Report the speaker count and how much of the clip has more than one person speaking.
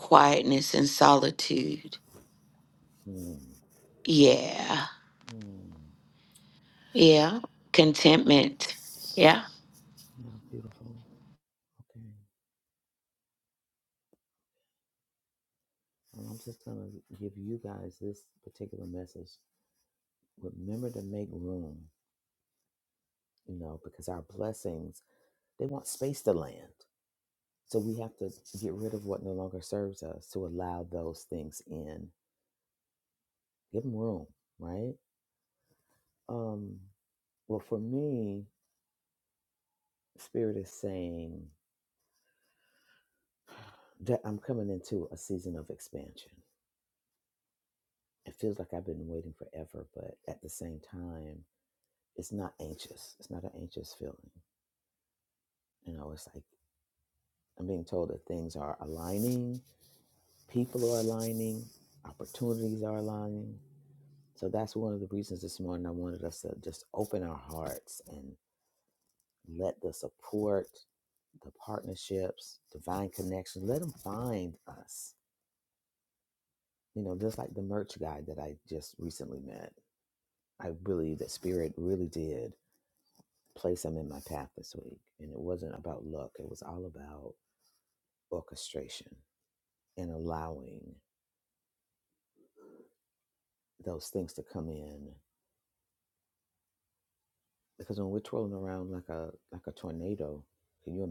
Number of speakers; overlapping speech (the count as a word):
two, no overlap